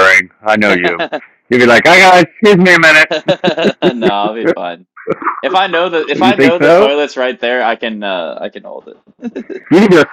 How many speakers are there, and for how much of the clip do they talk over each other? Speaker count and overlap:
two, about 8%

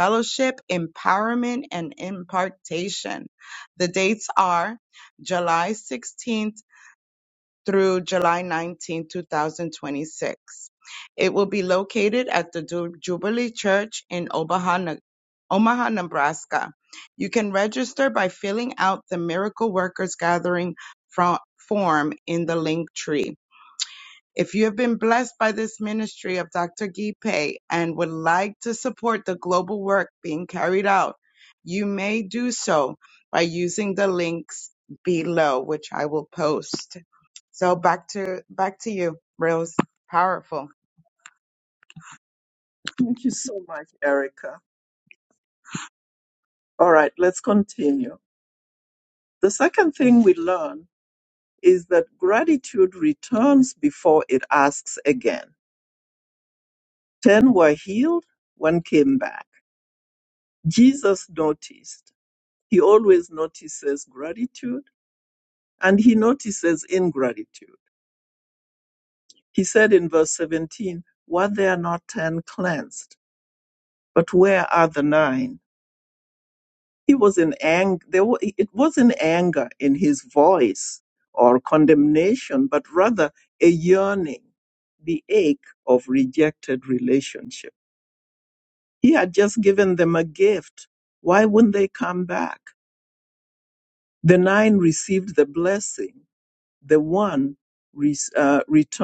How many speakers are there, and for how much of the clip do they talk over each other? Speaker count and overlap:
two, no overlap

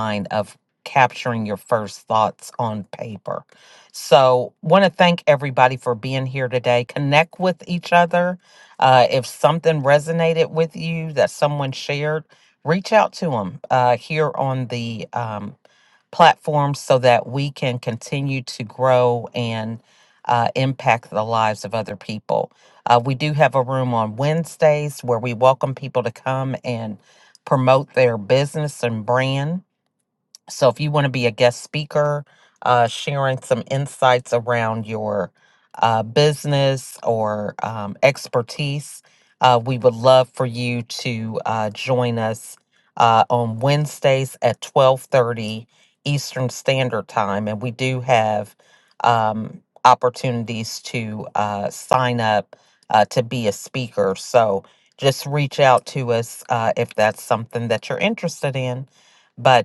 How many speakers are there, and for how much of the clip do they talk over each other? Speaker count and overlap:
one, no overlap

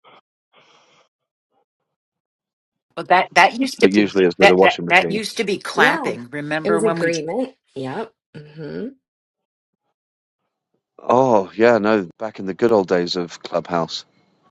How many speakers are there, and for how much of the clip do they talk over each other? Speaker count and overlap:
three, about 13%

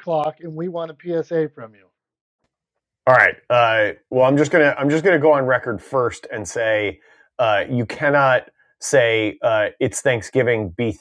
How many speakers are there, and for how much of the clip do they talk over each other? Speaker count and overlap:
two, no overlap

